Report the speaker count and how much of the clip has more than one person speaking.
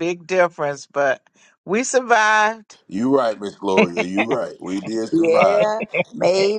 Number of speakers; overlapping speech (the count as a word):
three, about 9%